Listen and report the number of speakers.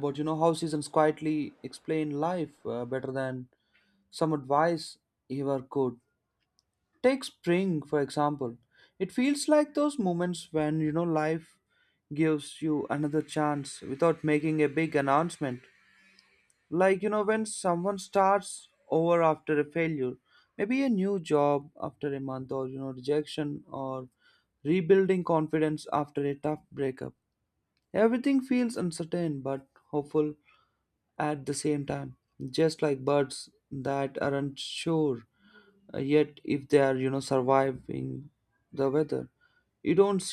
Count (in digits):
1